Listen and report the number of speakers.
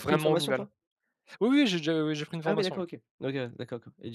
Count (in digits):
2